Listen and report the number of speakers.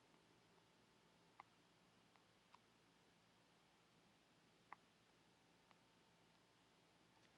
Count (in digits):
0